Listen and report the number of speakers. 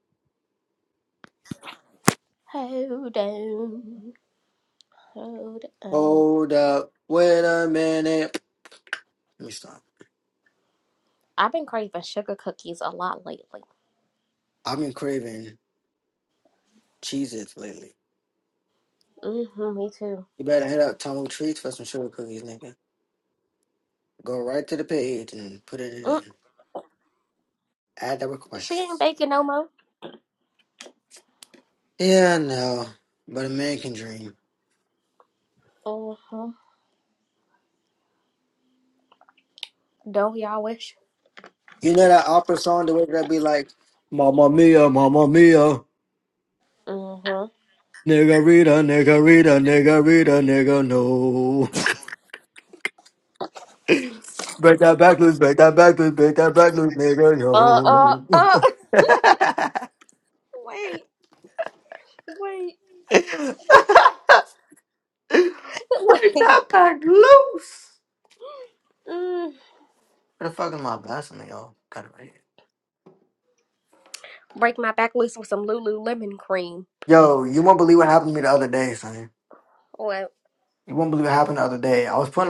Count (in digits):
2